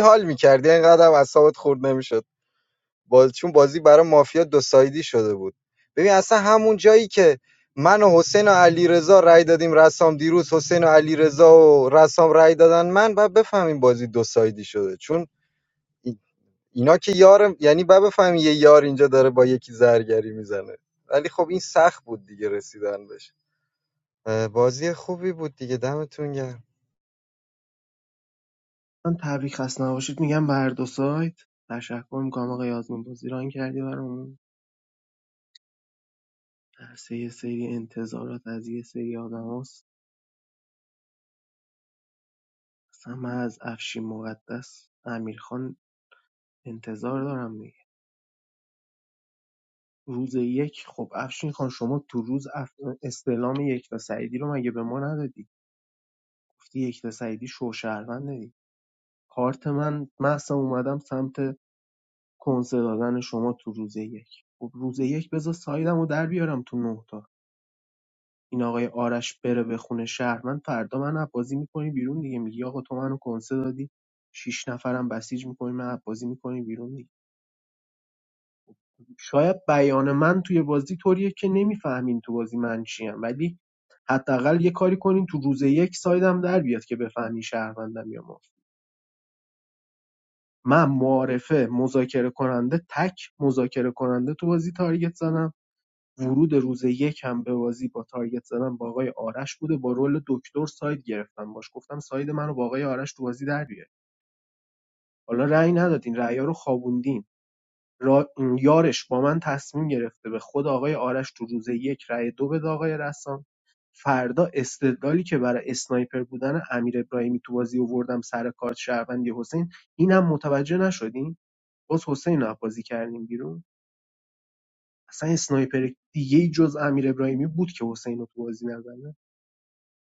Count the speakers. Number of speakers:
2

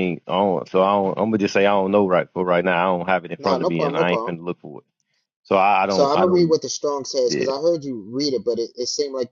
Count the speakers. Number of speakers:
2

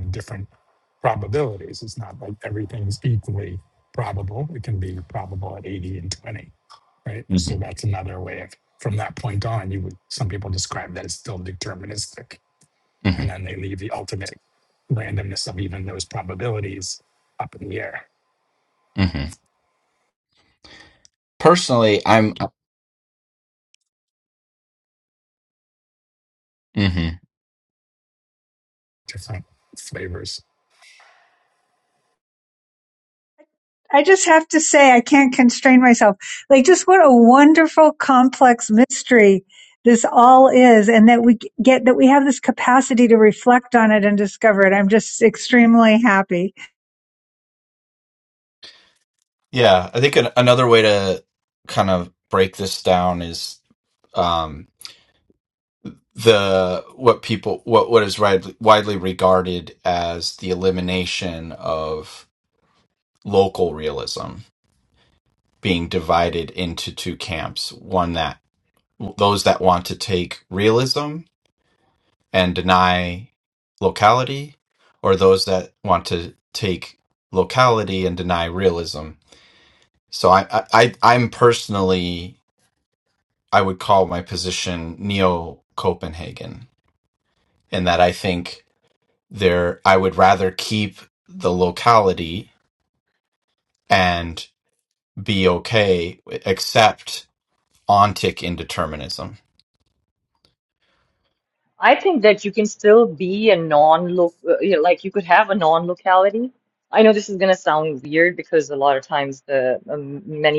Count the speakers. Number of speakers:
4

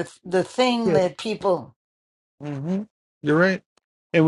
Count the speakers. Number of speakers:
2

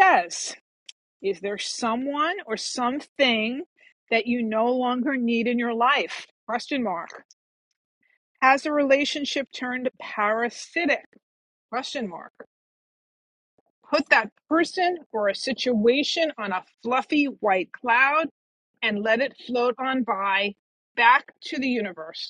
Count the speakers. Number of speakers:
1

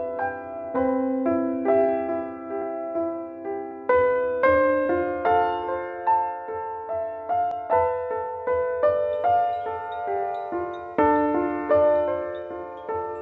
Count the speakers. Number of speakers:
0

